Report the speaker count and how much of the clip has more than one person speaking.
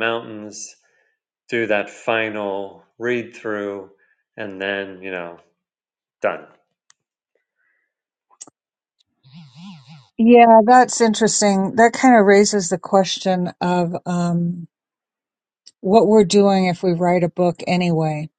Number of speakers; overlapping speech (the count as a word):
two, no overlap